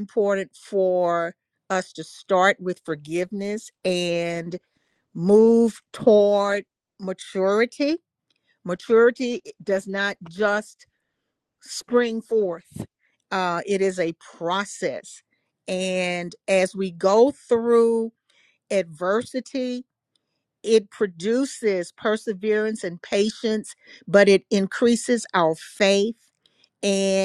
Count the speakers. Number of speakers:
one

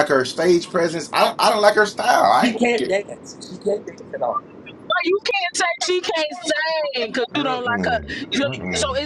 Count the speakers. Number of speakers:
three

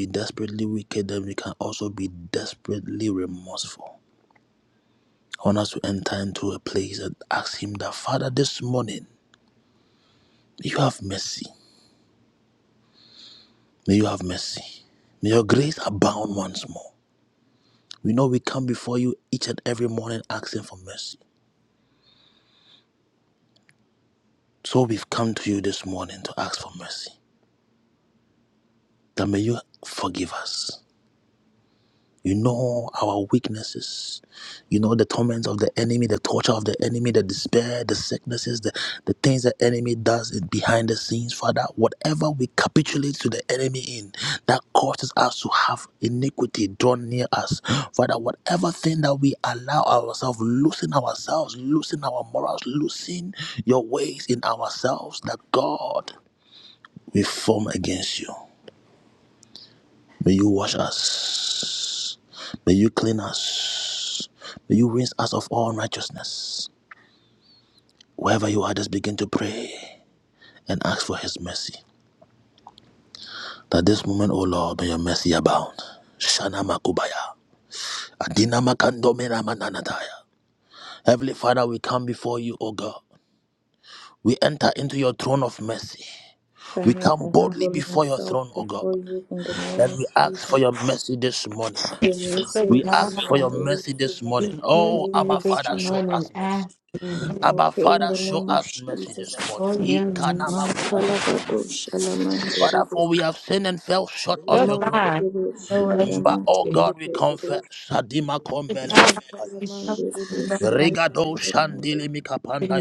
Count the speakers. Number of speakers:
three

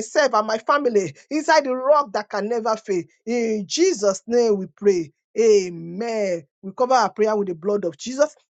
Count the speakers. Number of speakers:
one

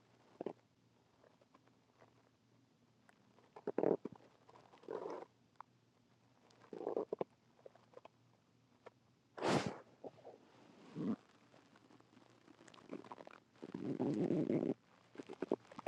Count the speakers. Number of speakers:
zero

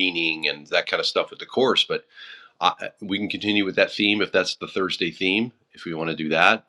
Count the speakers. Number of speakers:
one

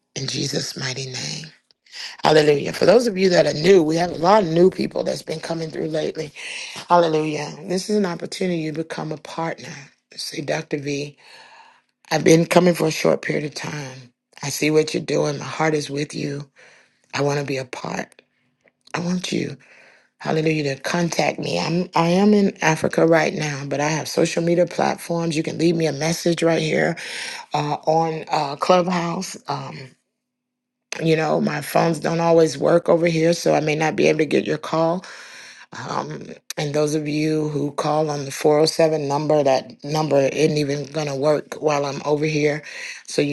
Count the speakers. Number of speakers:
one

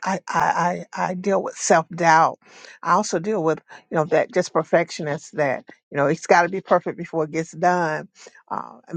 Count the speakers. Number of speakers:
one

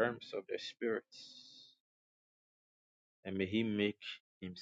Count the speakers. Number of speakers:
one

